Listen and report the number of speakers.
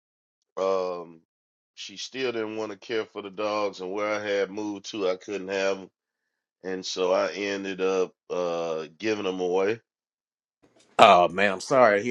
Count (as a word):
two